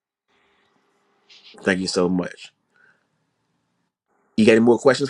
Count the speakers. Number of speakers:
1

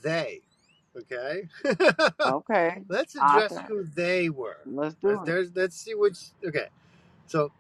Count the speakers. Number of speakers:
2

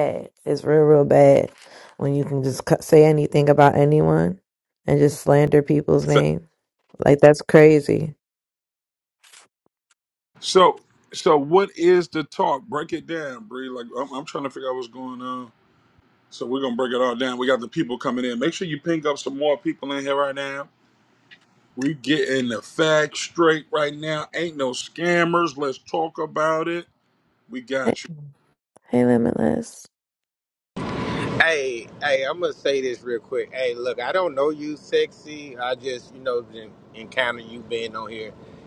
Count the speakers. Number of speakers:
3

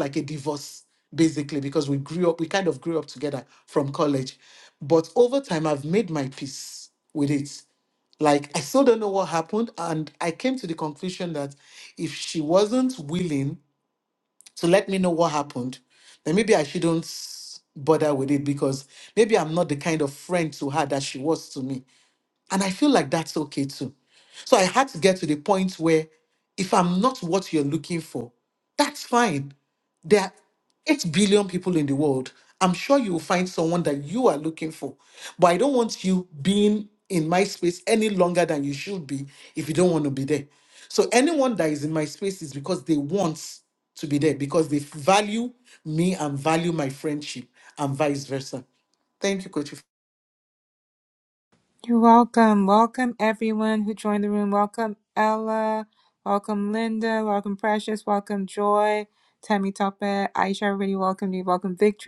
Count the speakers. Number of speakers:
2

